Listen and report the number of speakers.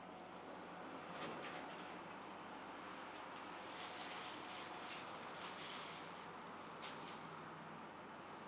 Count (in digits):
1